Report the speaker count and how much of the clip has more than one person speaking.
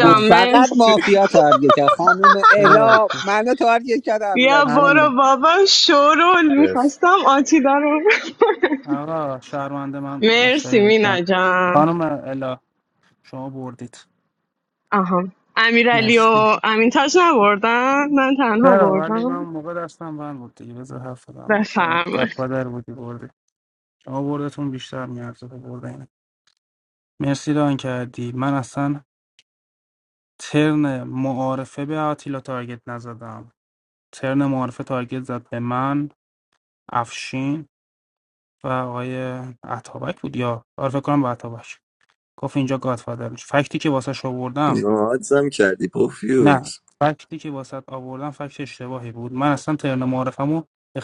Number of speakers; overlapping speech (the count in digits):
4, about 12%